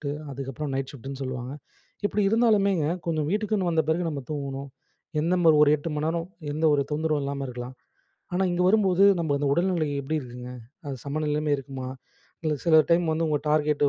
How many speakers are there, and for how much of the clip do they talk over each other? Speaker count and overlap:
one, no overlap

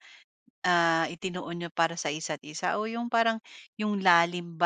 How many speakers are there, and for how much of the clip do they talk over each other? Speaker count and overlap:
one, no overlap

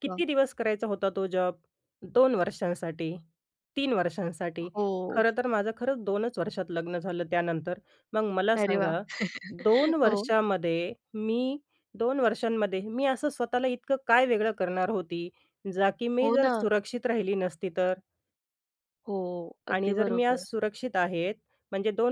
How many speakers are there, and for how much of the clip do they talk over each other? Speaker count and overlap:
two, about 11%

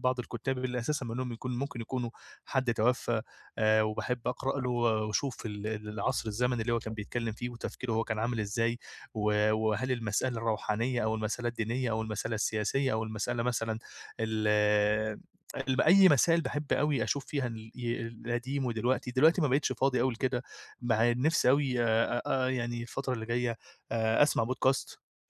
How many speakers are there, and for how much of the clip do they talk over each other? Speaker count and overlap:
one, no overlap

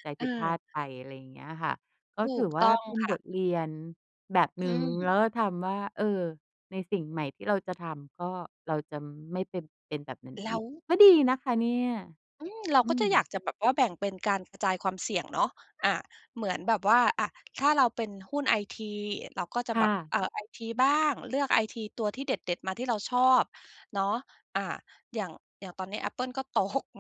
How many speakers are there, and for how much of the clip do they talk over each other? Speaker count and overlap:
two, about 10%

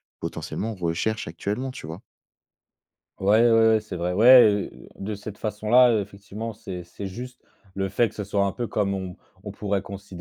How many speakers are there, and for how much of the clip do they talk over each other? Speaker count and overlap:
two, no overlap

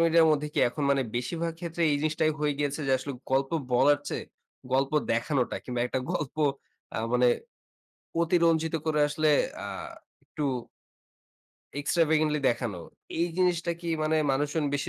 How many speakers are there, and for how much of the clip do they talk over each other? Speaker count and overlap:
one, no overlap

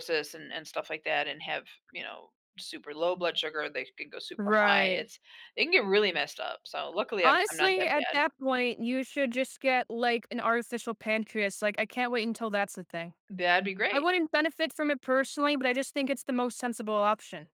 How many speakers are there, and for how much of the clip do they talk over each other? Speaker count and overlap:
two, about 10%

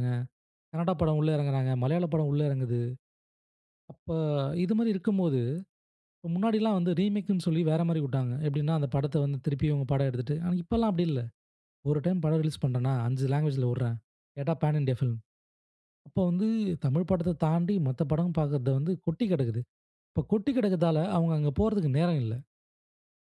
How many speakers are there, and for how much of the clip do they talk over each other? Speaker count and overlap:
one, no overlap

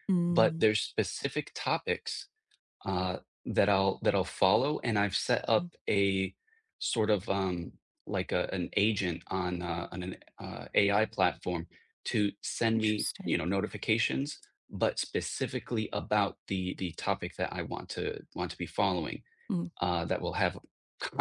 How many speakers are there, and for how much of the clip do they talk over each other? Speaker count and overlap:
two, about 4%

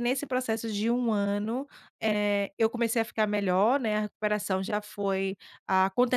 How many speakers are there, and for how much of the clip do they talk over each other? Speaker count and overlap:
one, no overlap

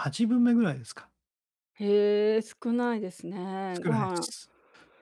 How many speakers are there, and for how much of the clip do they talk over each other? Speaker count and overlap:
two, about 10%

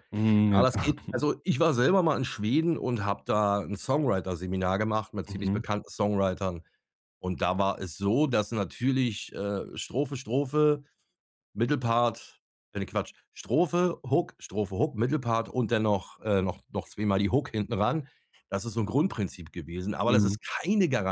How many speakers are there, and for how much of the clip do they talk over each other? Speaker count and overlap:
two, about 4%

